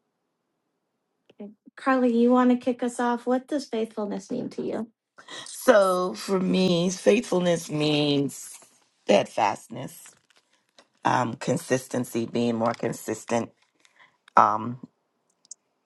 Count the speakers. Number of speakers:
2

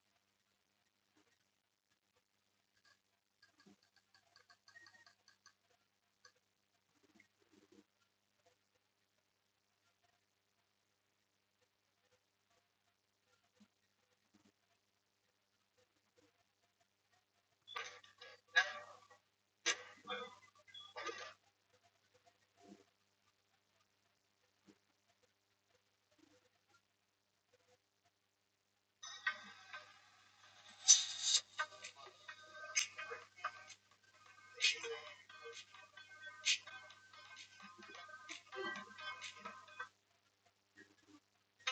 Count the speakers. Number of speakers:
0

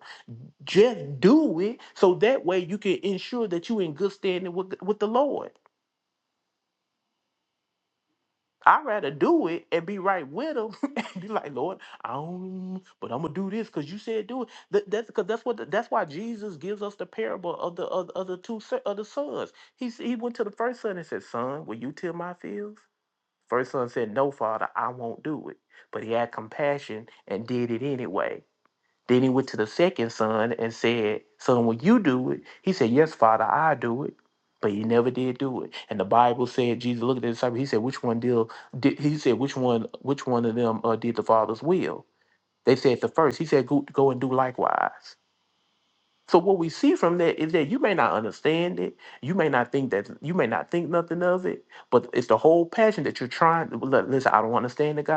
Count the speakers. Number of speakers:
1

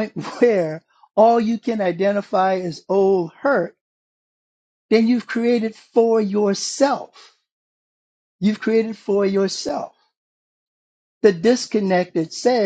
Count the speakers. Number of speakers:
1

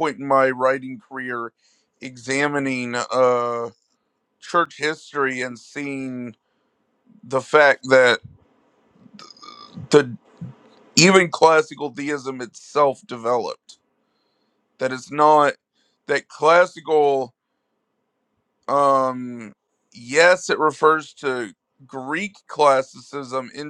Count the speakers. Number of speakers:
1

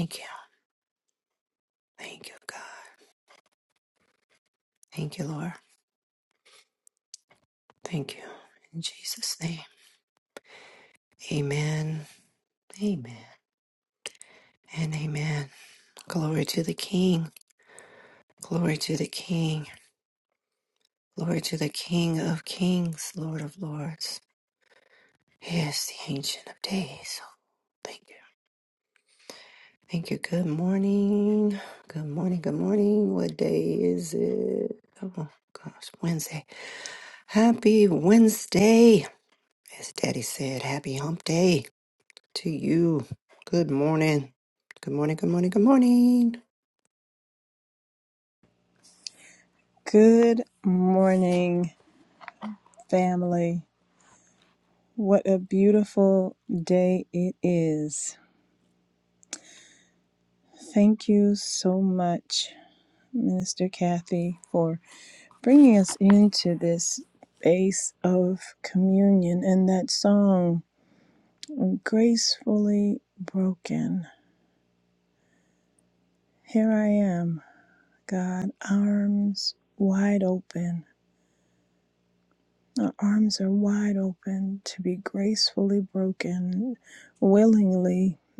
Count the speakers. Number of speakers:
2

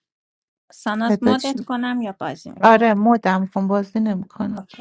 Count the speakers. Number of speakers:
2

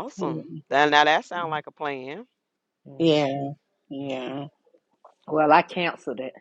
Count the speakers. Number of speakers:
3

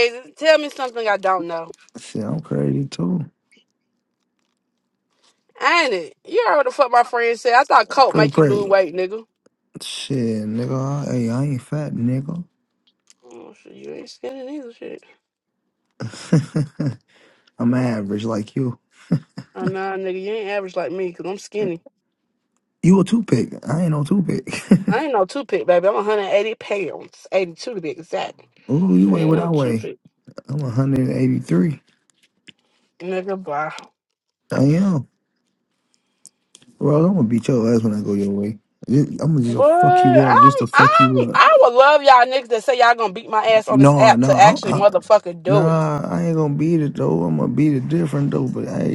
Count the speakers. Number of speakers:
2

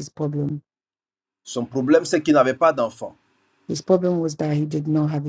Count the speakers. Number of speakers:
2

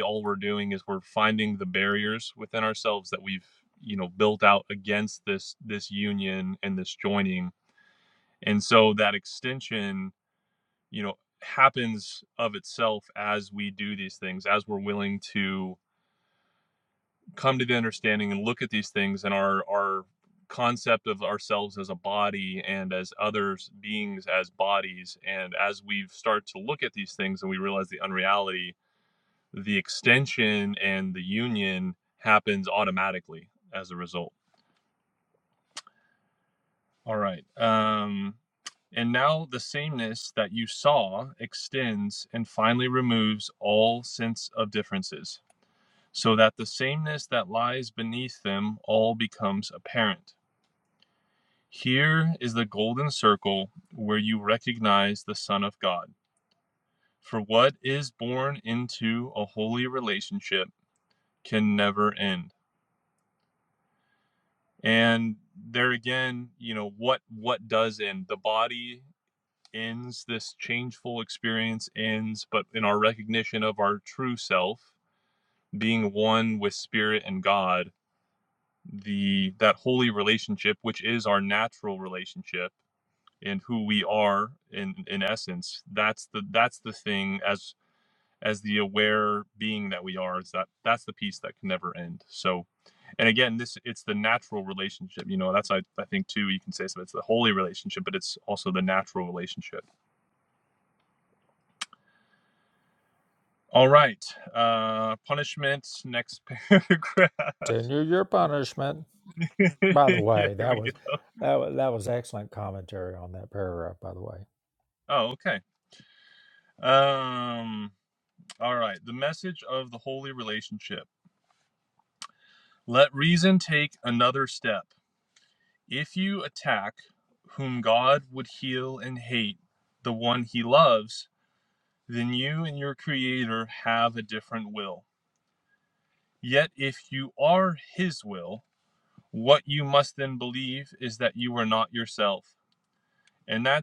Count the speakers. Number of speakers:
2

